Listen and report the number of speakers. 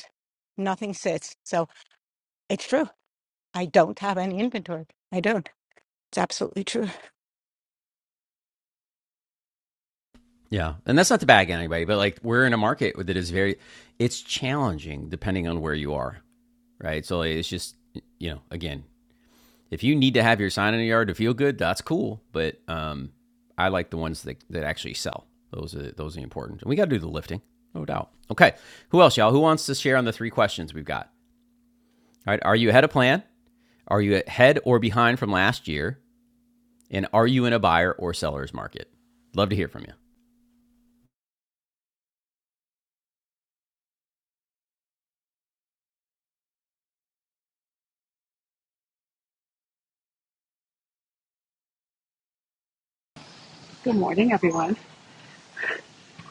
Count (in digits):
3